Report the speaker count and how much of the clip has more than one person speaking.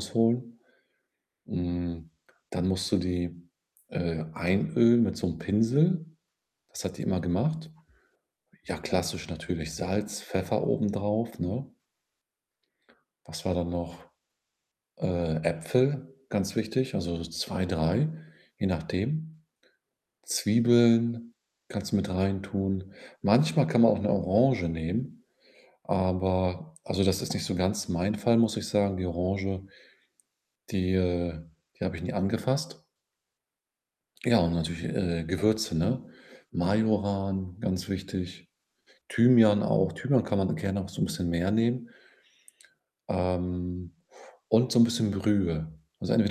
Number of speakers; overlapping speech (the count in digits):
1, no overlap